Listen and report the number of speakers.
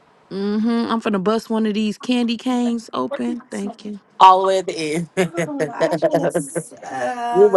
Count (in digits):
3